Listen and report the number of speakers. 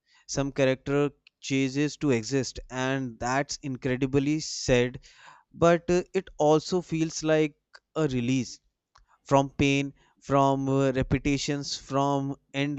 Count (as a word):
one